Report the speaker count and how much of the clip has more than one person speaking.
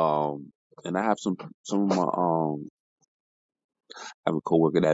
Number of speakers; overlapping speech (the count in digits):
1, no overlap